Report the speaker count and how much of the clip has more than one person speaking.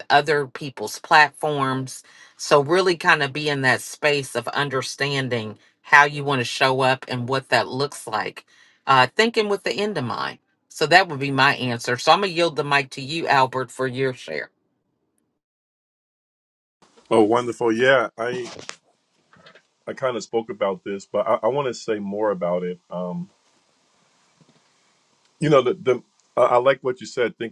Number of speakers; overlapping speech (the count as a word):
two, no overlap